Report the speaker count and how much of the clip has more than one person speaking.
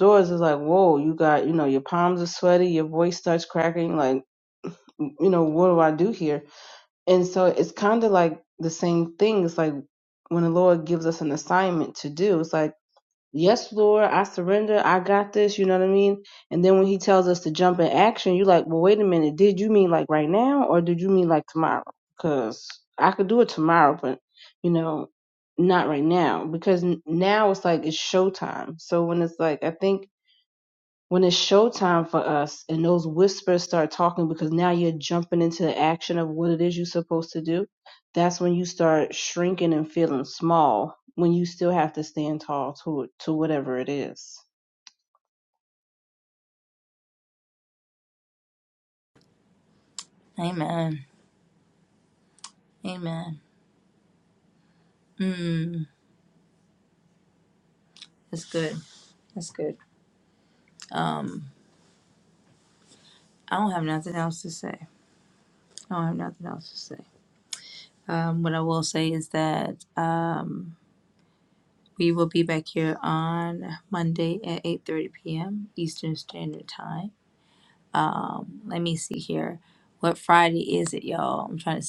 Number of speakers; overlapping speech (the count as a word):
two, no overlap